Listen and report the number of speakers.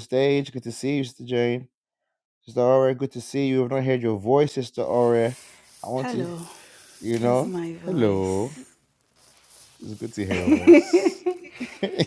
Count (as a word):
two